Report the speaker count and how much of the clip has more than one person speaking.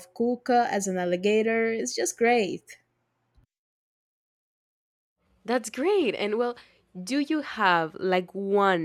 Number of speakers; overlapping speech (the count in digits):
2, no overlap